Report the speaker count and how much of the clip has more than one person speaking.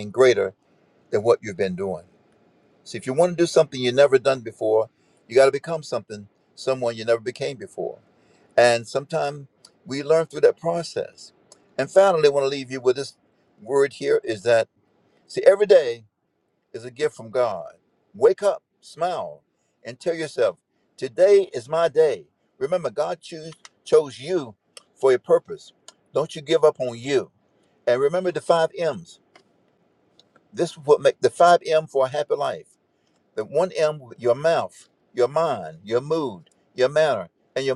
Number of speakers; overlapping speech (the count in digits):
1, no overlap